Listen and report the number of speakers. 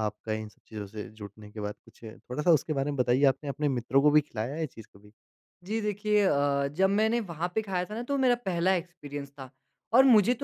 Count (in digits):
2